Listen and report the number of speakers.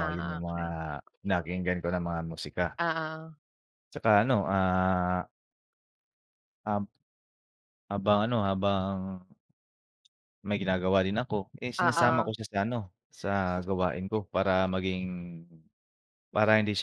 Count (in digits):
2